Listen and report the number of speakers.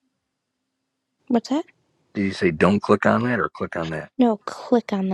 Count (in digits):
2